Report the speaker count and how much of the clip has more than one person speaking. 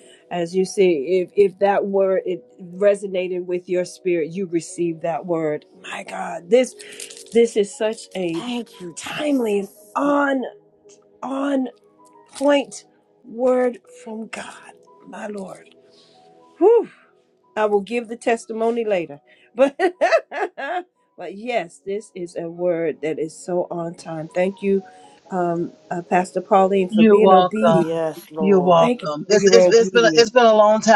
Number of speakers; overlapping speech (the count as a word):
three, about 10%